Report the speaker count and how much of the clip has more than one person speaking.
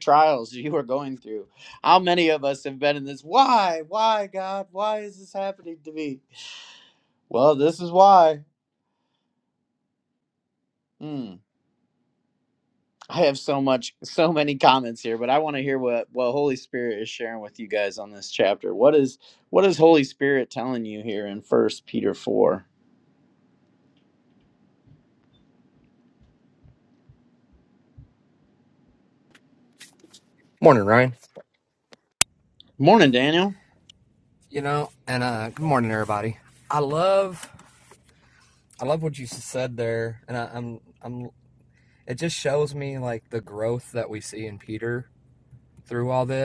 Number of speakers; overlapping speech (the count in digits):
2, no overlap